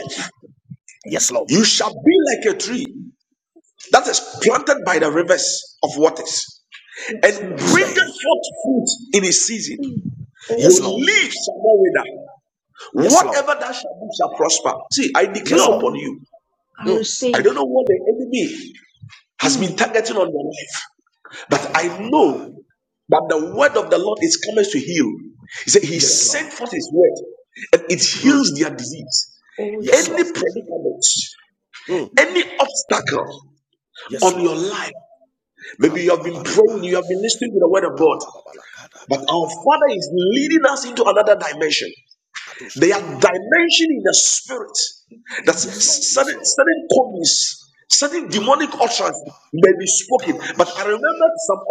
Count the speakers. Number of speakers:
3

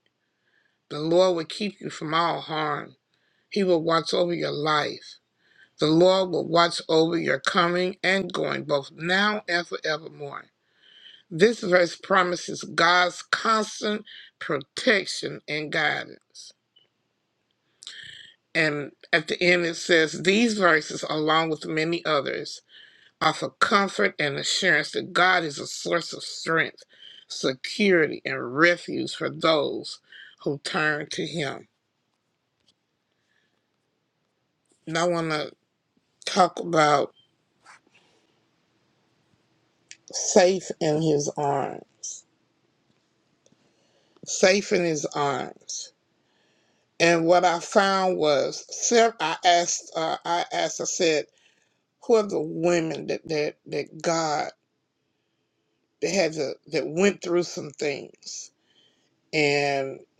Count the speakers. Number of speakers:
1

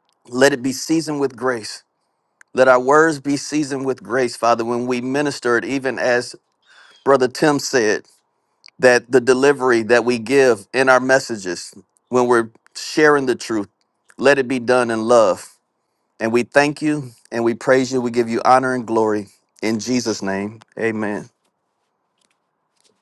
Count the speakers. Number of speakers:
1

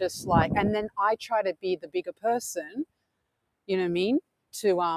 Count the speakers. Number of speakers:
1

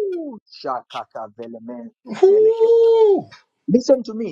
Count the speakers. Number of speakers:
2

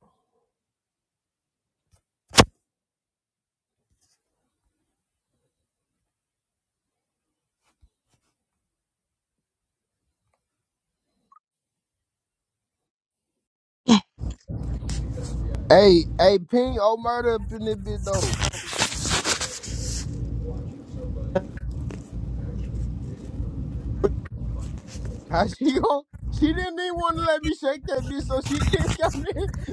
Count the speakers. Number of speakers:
1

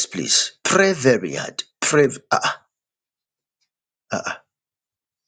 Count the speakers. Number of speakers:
1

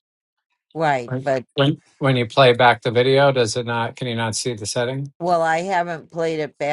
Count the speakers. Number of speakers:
2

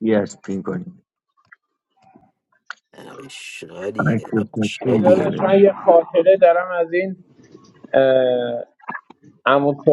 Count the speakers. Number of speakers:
3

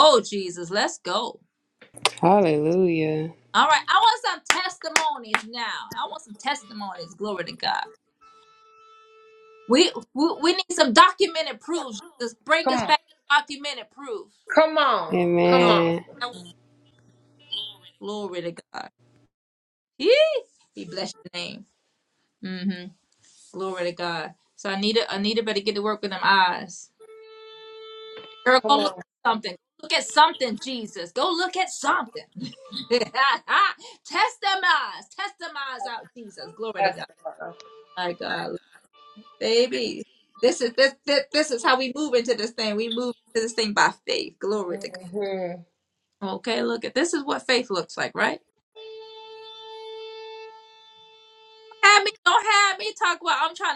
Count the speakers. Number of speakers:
3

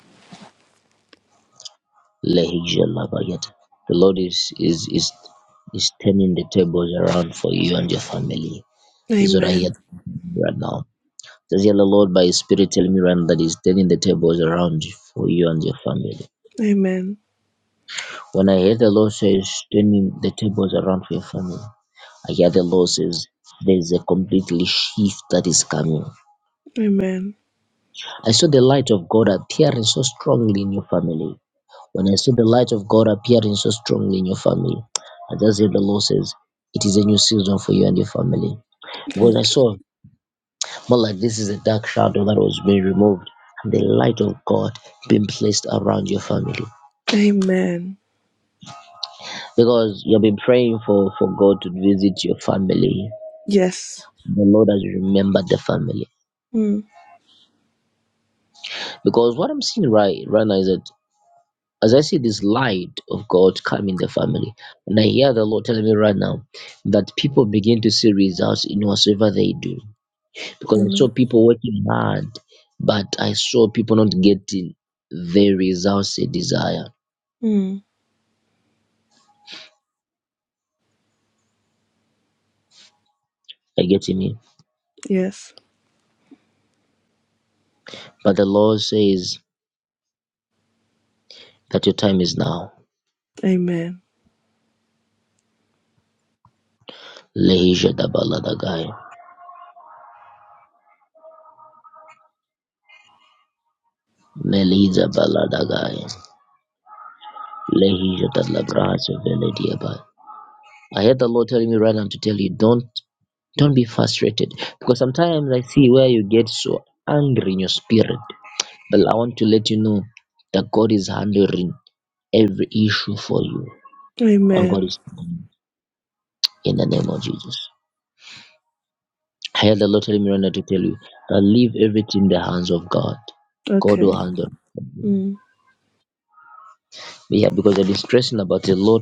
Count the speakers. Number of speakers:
2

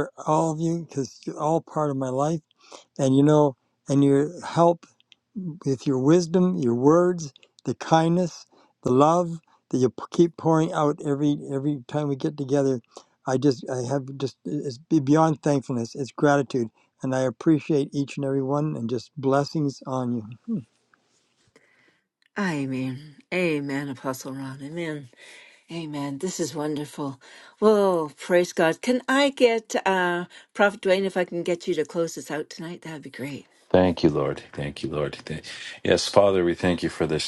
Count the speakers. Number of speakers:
3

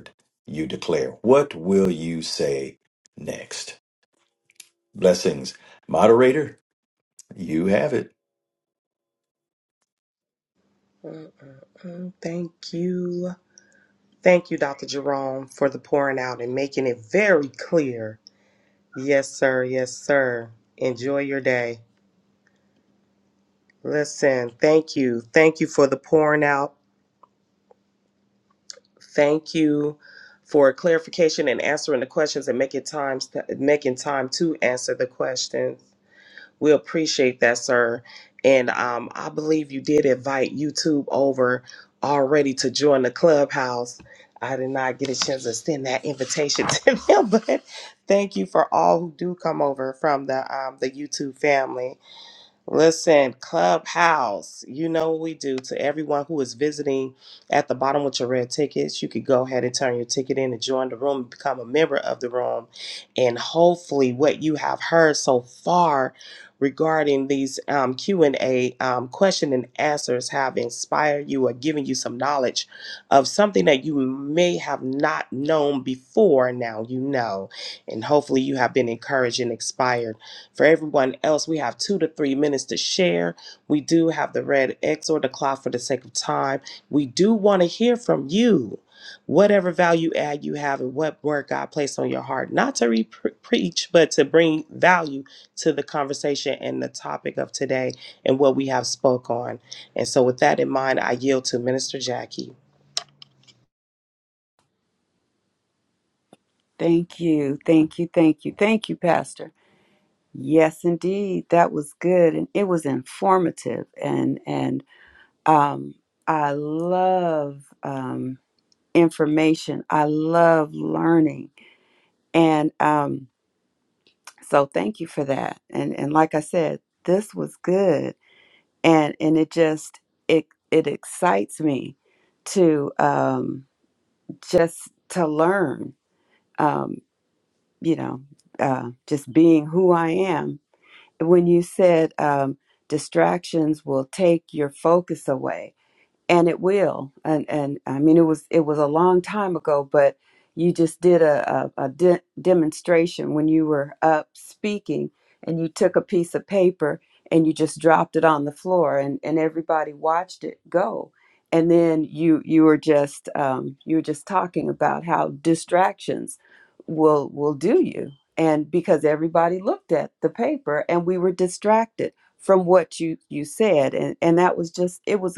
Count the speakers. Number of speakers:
3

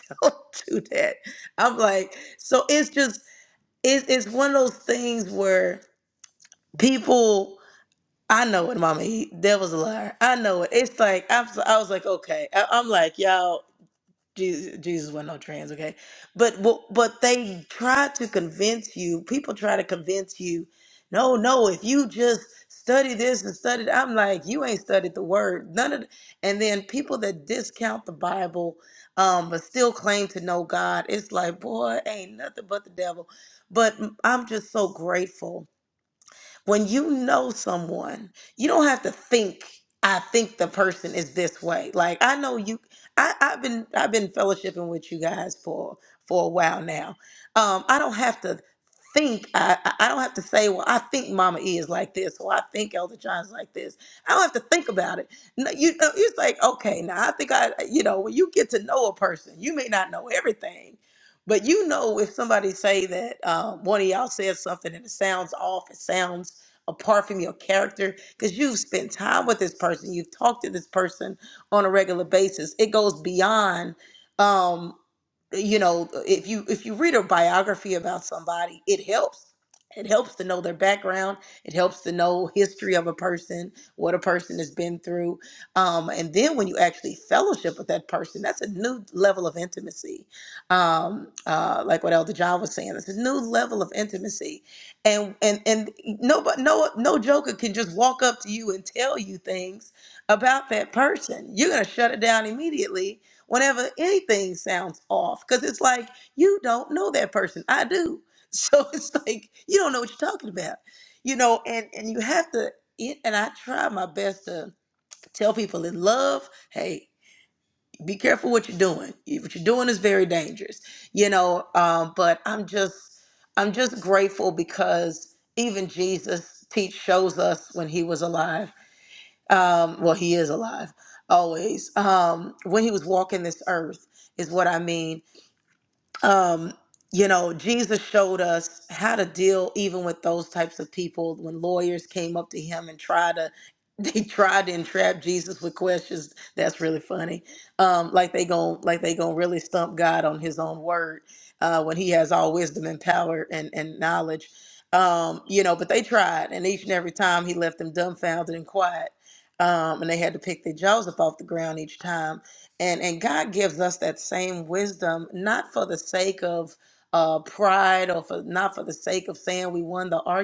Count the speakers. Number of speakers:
1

